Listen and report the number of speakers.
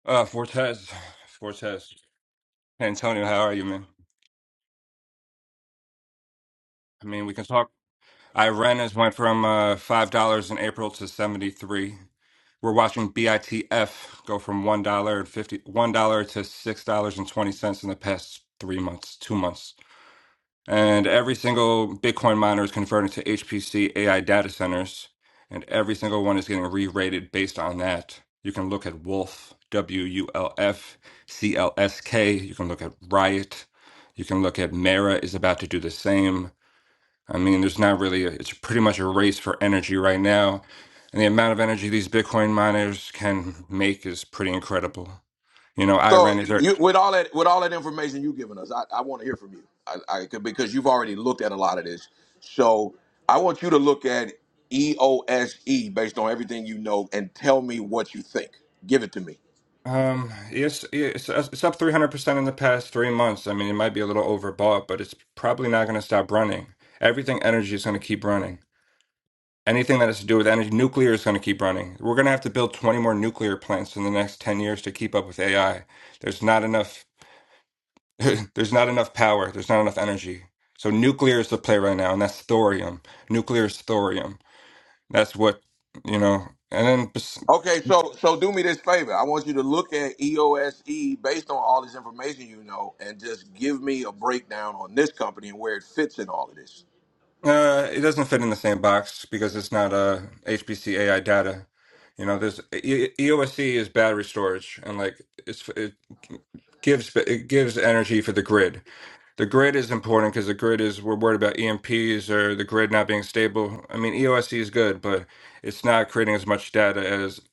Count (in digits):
2